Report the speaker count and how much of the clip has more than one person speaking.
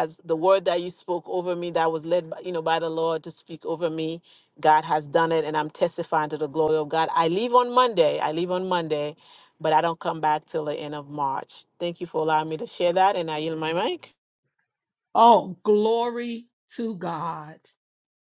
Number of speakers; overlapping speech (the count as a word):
two, no overlap